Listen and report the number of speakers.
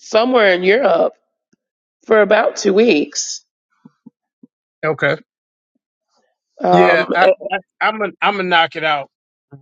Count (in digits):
2